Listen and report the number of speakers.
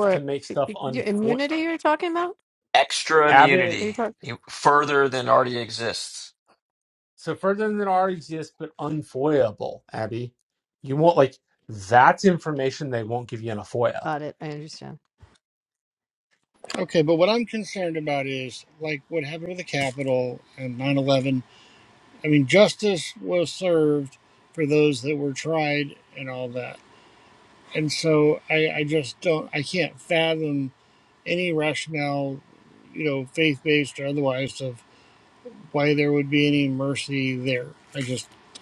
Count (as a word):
four